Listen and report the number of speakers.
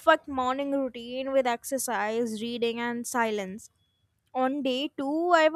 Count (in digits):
1